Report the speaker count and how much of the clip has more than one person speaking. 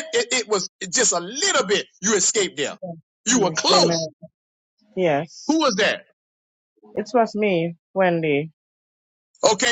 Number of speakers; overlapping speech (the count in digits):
2, about 6%